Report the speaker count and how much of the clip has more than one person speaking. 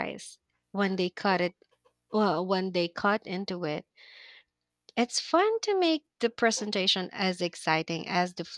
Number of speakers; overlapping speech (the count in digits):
1, no overlap